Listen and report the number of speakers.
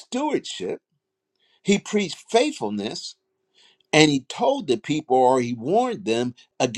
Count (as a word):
one